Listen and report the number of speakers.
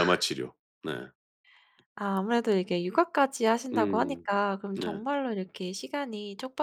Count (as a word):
two